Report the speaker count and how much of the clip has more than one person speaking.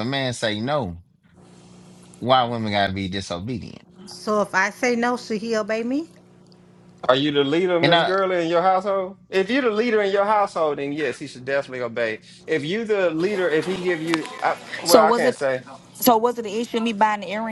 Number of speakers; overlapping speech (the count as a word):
four, about 6%